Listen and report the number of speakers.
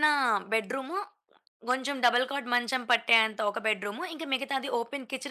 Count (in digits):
1